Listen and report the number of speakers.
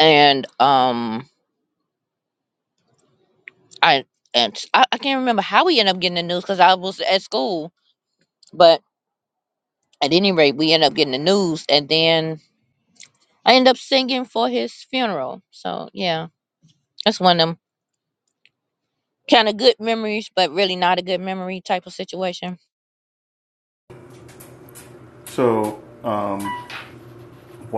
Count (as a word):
two